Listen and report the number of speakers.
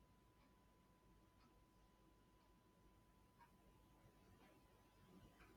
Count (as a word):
zero